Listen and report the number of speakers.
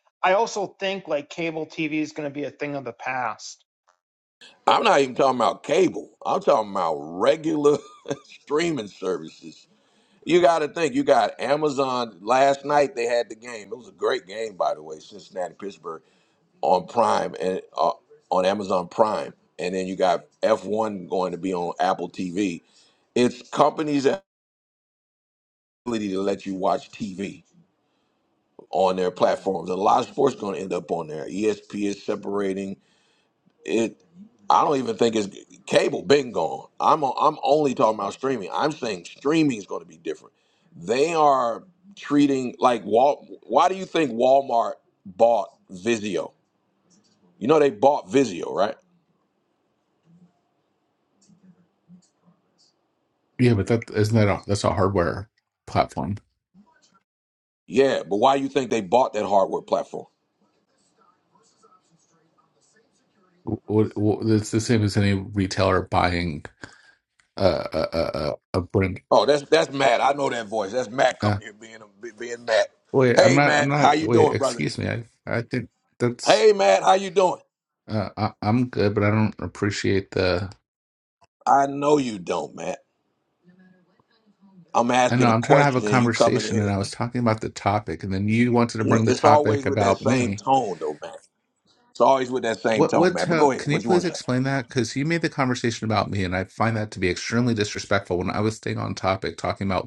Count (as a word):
three